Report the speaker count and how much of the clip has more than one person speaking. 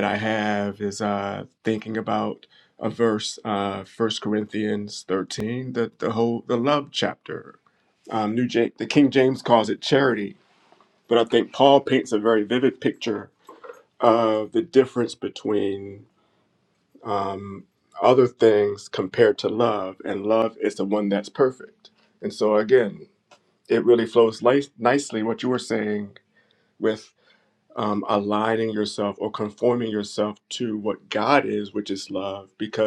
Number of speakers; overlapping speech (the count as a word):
one, no overlap